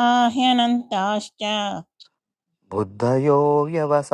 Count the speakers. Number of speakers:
two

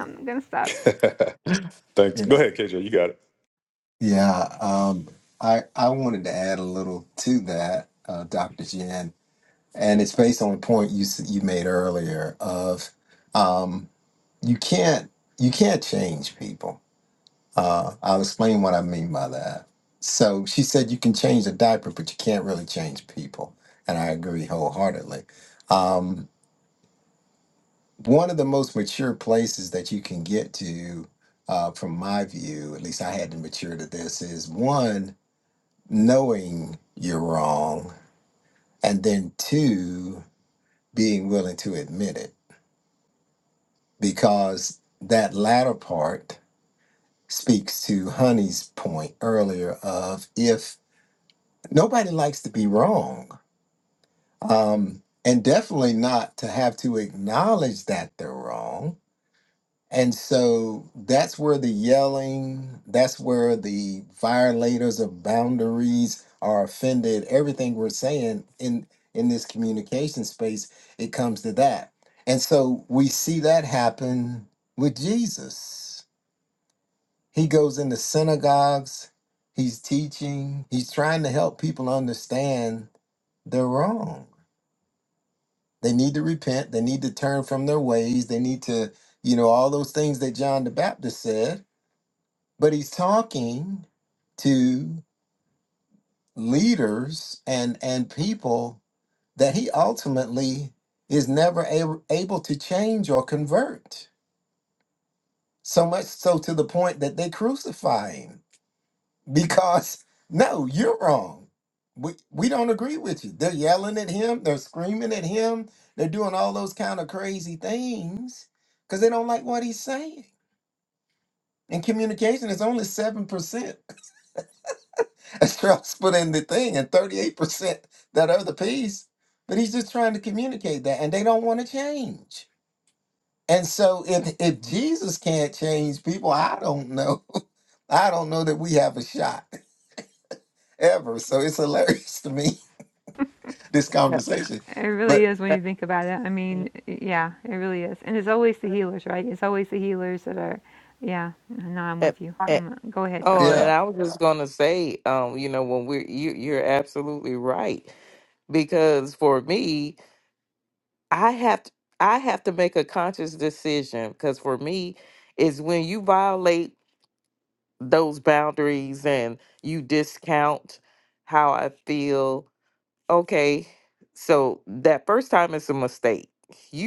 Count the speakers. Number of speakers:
four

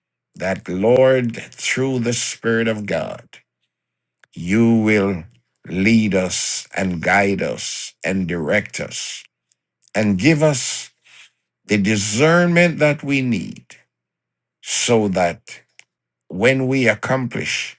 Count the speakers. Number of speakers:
one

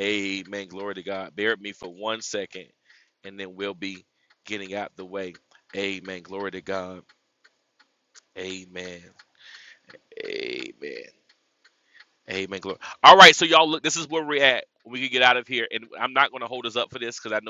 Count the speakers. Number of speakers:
one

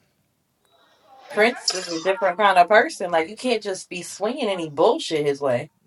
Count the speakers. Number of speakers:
one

